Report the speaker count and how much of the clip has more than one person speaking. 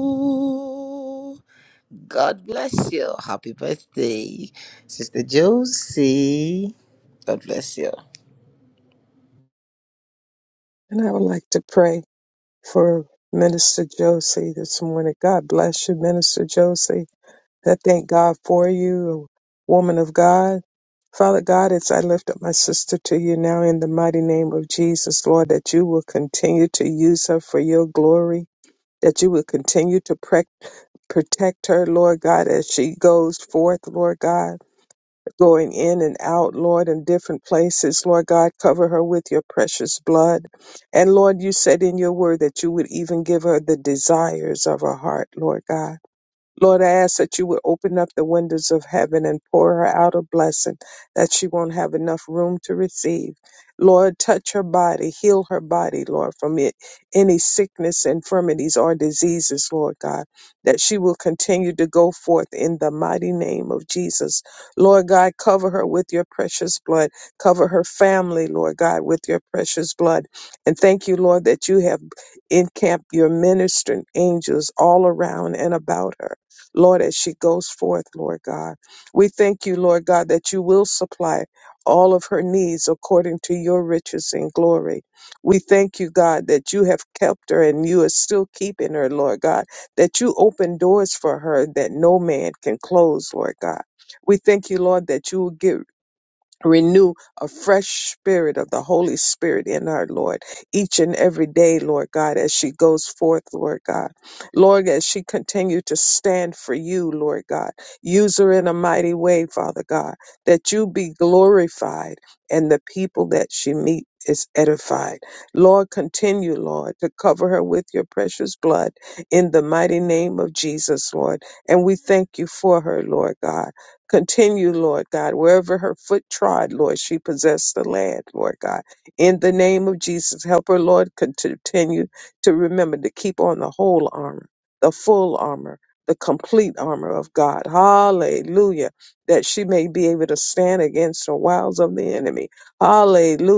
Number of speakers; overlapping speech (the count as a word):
two, no overlap